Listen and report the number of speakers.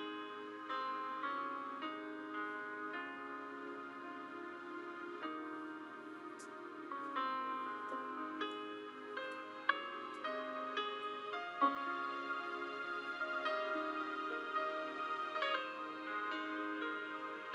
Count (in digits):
0